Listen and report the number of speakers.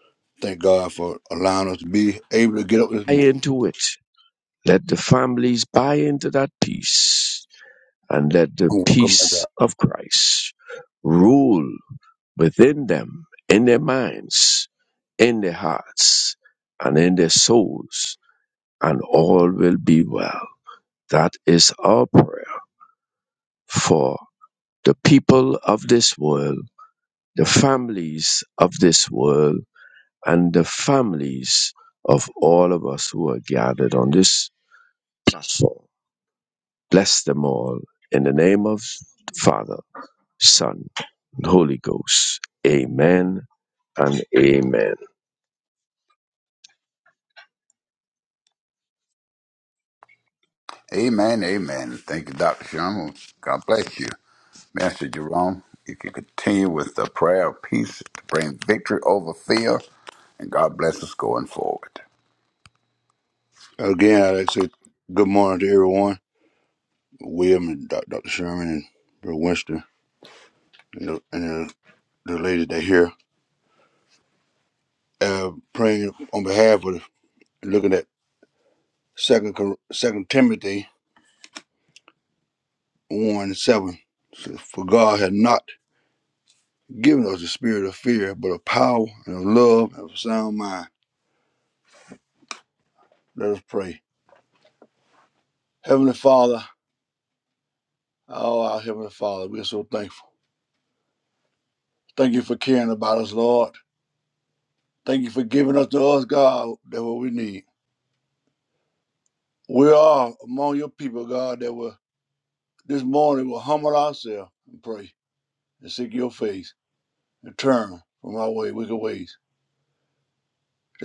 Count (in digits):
3